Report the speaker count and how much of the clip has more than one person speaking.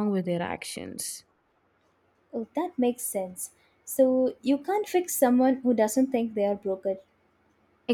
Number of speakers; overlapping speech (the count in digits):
2, no overlap